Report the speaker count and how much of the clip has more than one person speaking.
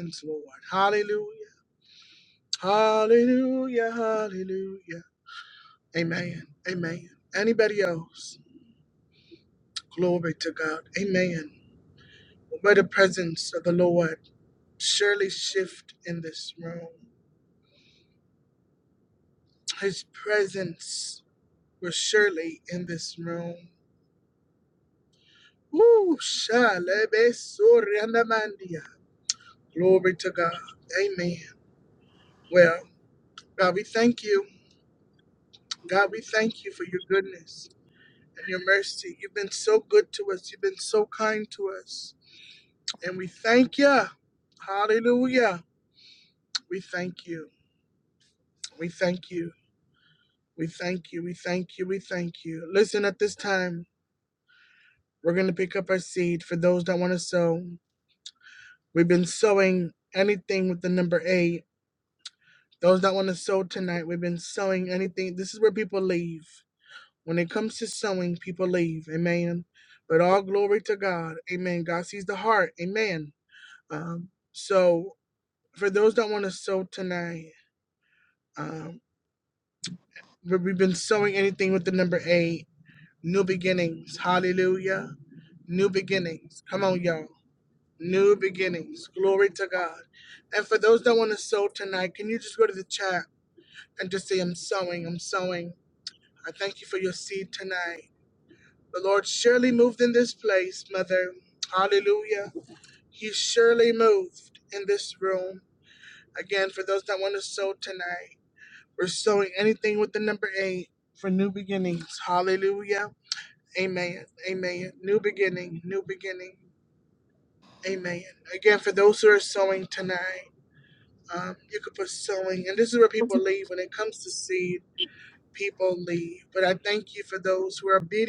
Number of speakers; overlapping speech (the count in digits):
1, no overlap